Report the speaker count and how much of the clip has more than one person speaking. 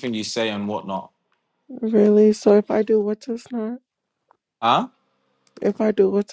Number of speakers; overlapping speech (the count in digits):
2, no overlap